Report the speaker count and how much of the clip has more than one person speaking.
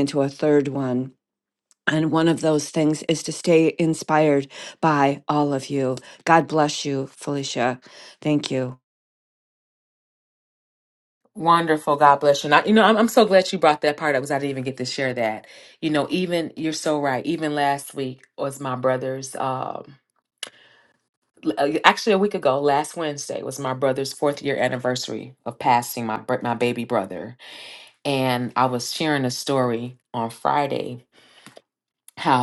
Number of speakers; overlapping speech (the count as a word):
two, no overlap